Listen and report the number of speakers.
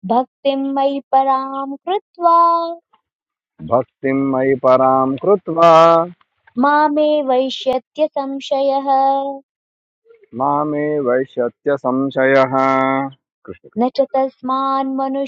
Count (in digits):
2